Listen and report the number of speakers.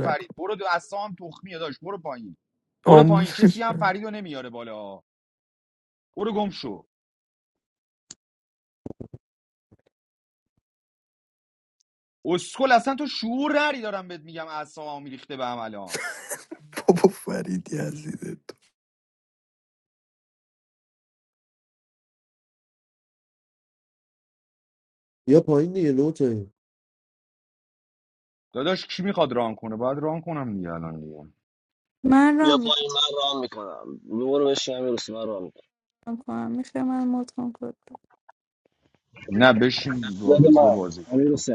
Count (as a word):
five